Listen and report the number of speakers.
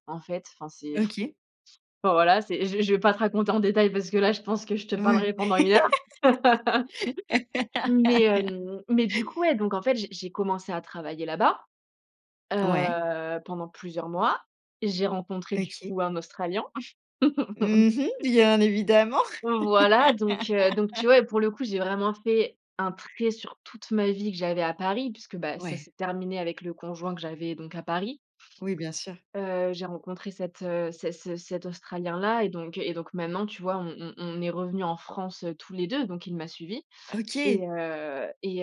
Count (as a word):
two